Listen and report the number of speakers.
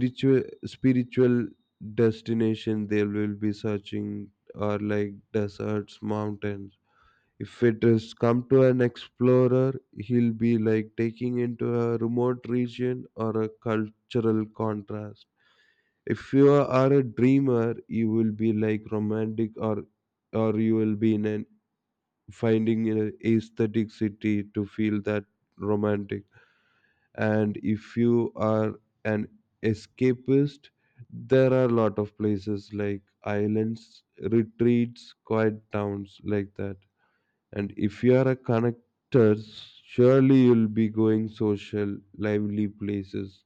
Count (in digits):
1